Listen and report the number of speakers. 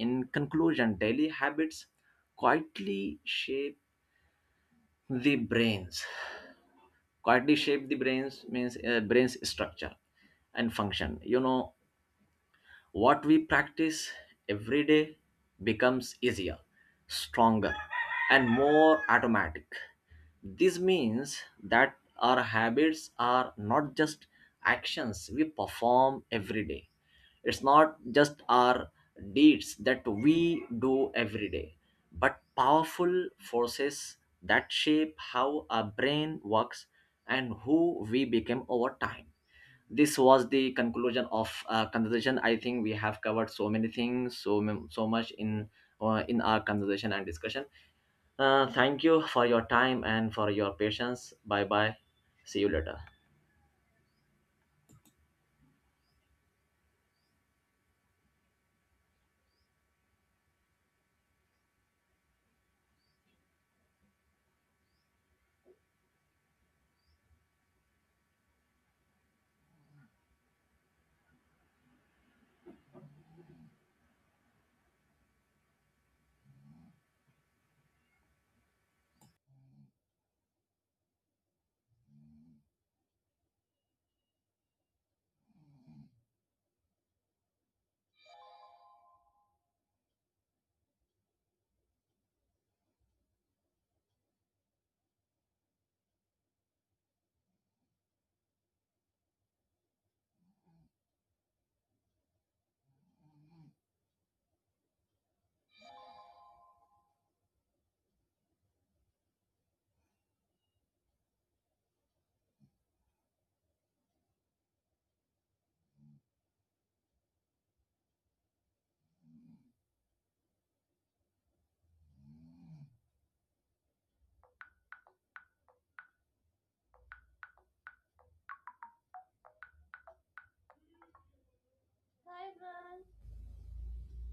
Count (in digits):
2